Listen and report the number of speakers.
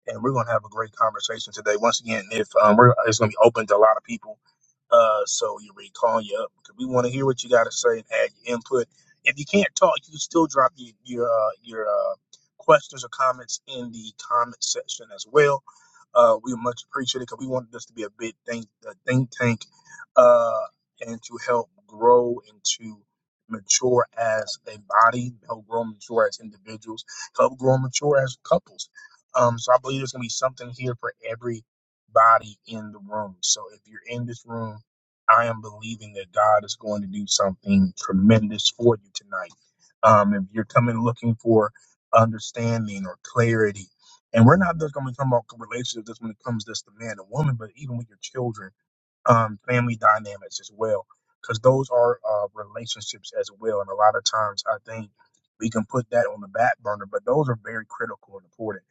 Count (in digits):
1